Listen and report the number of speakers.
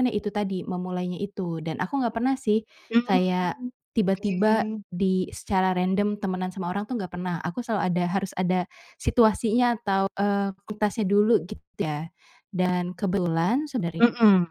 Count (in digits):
2